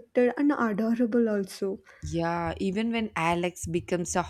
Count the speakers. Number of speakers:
two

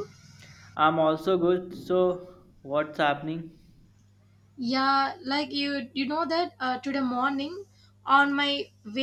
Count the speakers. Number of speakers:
two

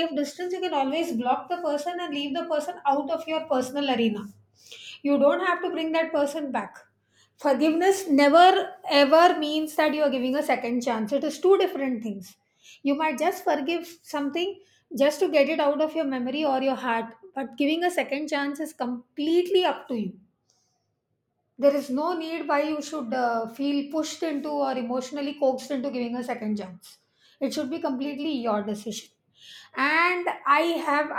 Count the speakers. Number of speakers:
one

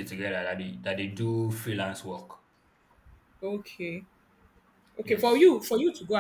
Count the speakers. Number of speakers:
two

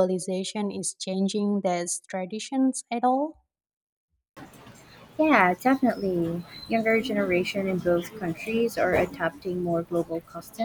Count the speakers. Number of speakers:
two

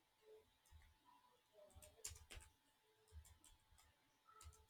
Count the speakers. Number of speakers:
zero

